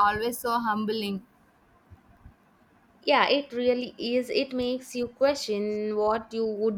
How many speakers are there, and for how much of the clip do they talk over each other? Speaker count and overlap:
two, no overlap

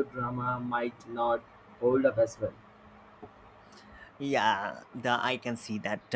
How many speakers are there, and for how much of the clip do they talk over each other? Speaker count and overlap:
two, no overlap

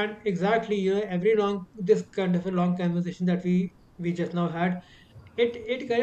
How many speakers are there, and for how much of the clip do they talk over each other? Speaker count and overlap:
one, no overlap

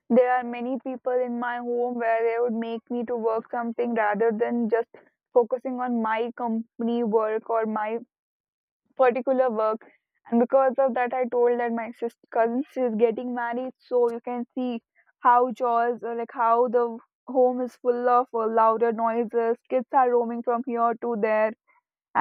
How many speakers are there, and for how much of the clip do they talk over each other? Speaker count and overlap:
one, no overlap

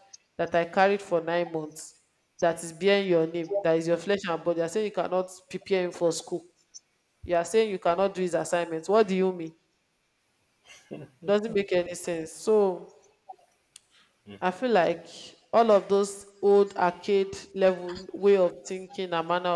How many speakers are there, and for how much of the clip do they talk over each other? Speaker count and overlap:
one, no overlap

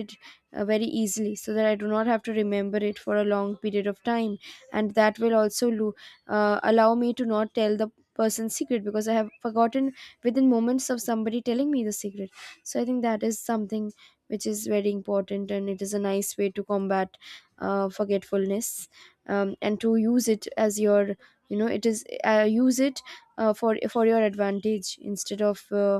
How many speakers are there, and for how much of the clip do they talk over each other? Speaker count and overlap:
one, no overlap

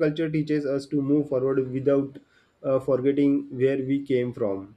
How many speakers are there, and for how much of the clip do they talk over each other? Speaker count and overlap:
one, no overlap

